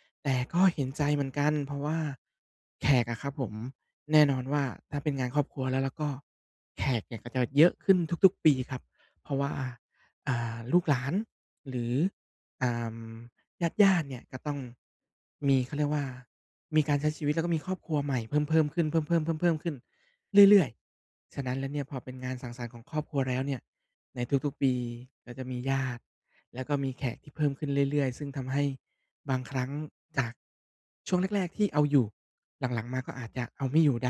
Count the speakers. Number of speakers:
1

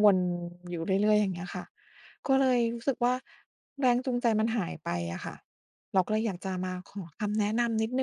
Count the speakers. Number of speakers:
1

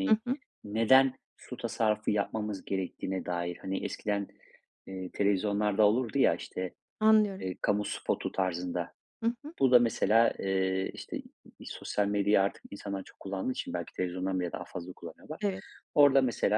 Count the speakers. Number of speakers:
2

